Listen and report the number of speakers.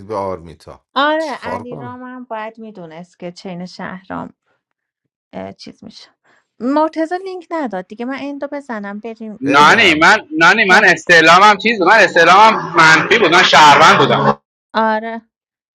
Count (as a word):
three